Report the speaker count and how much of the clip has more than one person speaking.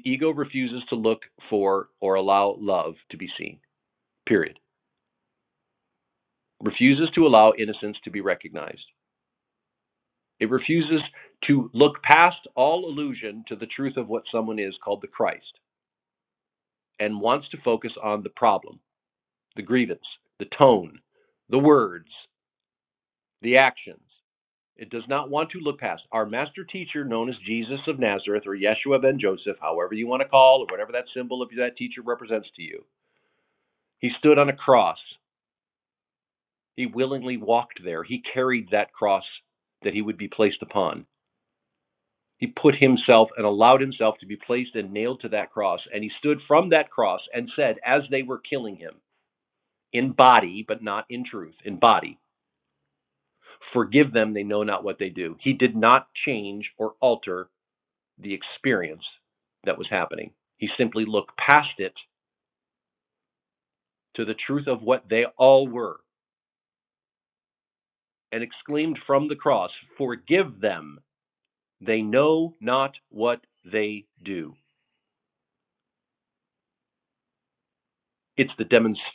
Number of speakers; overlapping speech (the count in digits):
1, no overlap